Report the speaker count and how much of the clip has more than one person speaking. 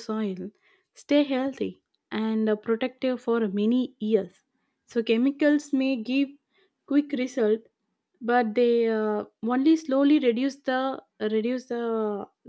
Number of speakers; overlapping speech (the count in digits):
1, no overlap